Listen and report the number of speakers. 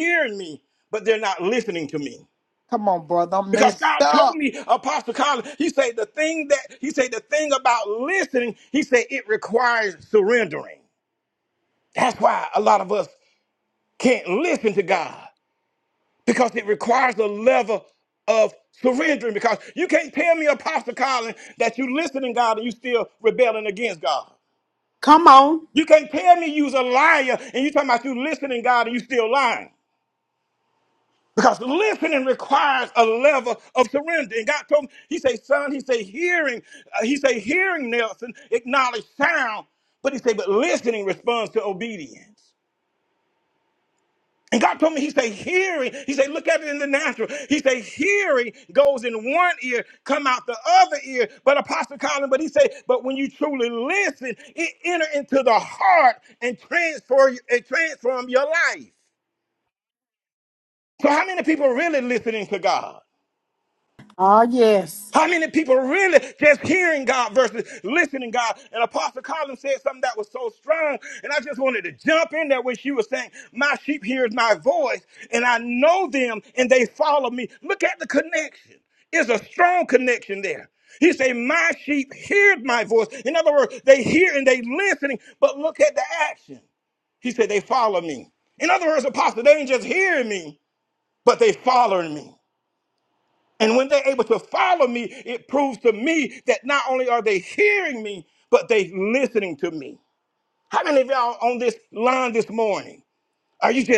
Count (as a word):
three